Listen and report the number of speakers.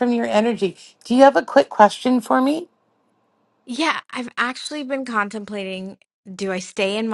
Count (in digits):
2